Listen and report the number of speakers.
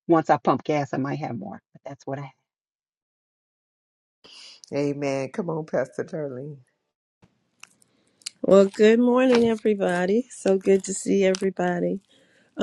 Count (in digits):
3